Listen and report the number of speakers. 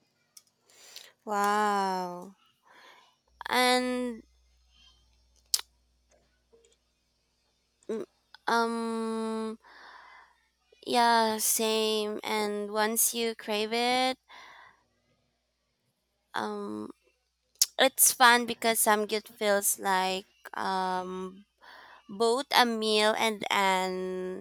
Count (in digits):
1